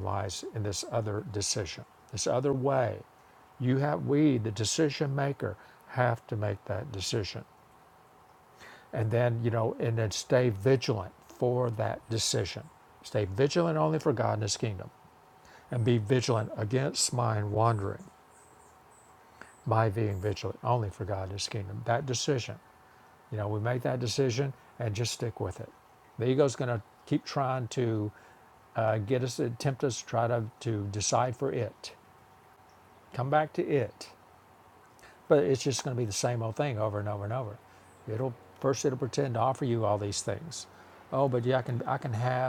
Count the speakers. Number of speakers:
1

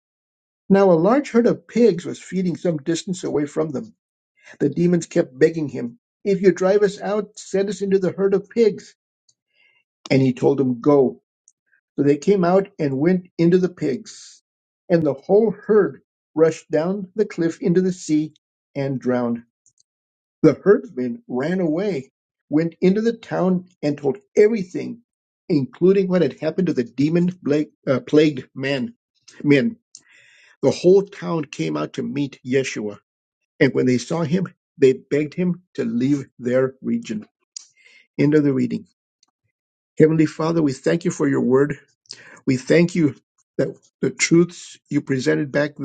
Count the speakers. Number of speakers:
1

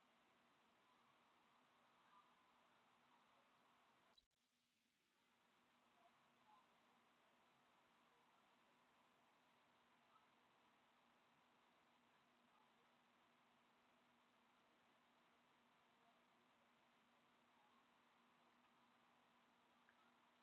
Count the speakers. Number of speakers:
0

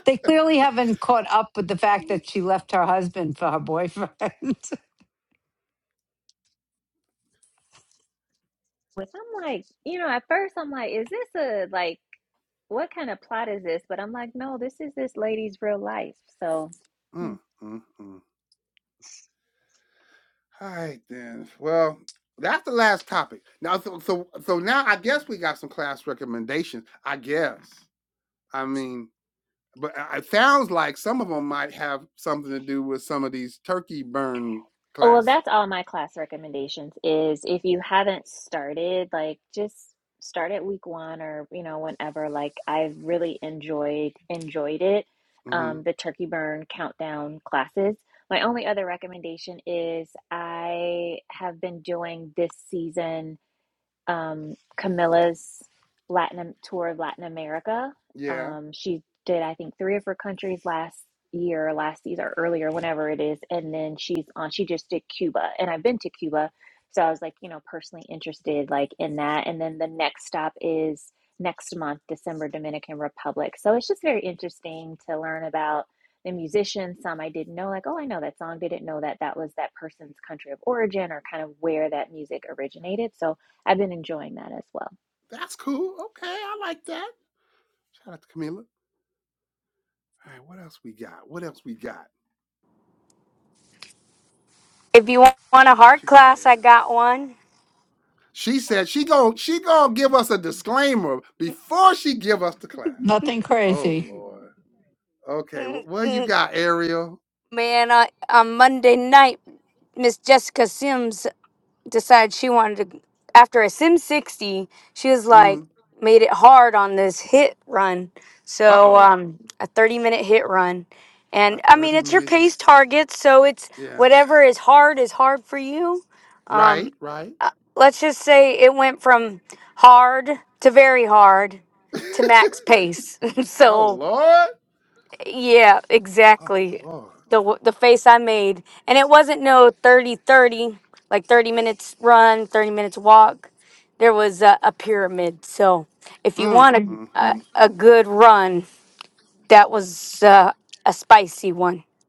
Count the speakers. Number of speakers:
4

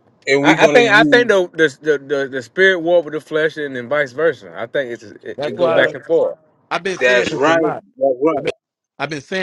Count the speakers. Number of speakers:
3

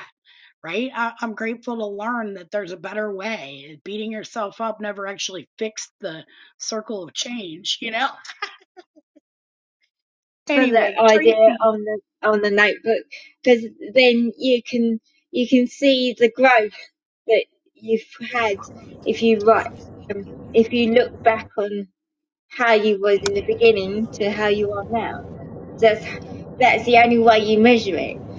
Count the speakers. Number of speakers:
2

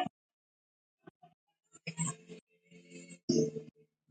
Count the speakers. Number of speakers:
0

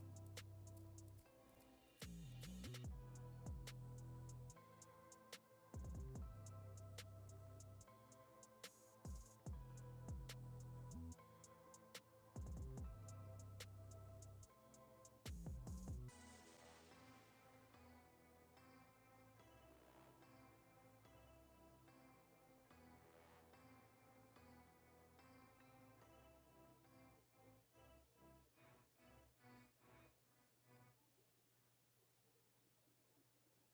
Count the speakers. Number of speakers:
0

